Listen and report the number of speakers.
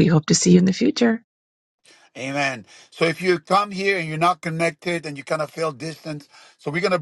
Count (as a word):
two